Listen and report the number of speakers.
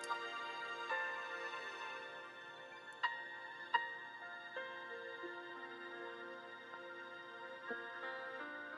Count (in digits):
0